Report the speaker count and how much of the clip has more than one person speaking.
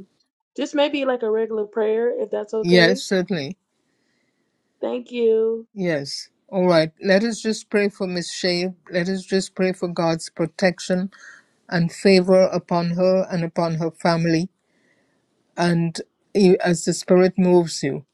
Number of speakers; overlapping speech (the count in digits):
2, about 2%